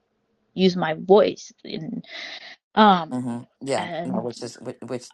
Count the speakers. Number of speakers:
2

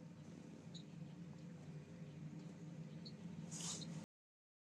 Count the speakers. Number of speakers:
0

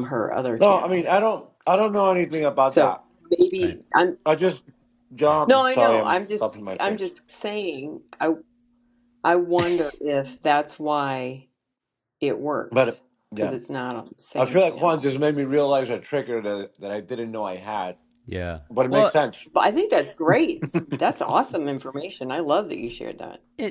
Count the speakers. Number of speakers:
3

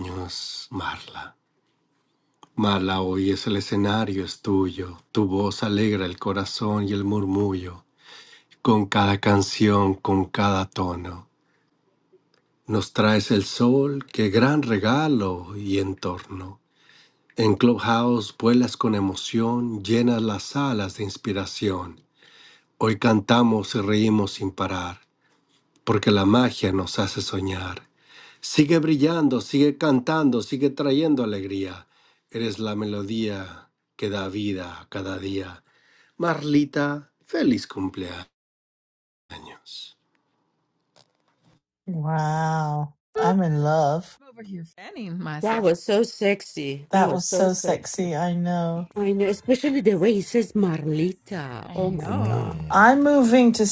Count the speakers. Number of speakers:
4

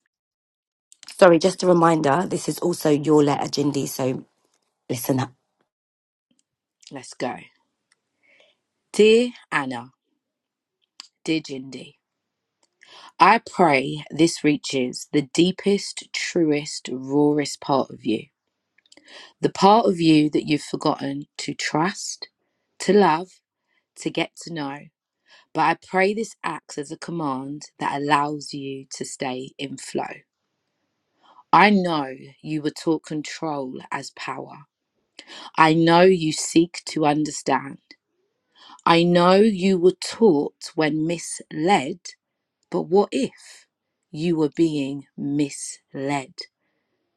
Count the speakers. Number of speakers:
2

